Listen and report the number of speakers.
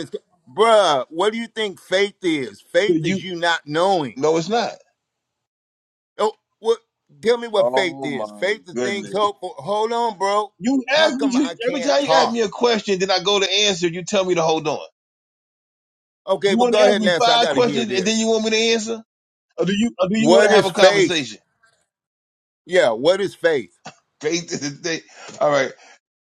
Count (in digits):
2